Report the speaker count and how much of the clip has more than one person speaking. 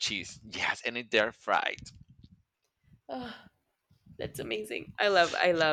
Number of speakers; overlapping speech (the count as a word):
two, no overlap